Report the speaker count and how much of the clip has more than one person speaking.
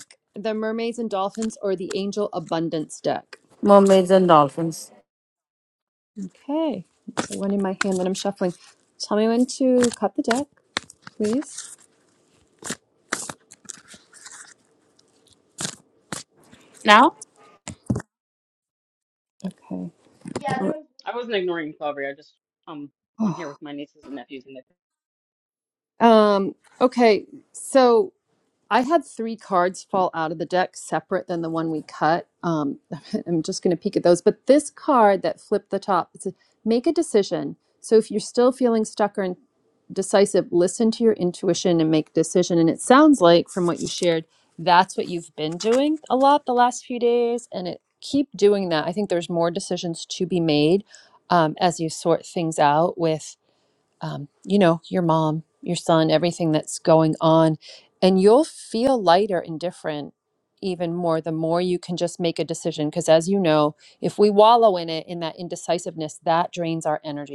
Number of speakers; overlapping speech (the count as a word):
three, about 1%